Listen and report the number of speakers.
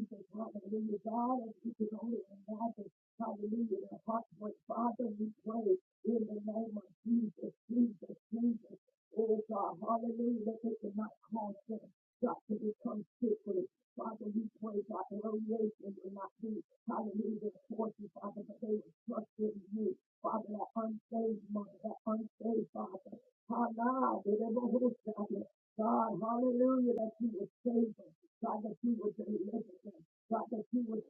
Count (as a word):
one